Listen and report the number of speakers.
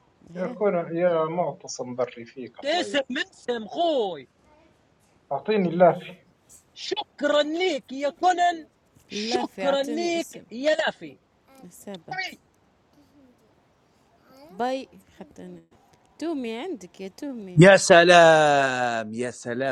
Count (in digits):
4